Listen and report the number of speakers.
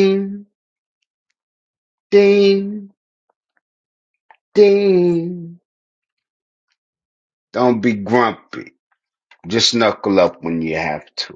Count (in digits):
1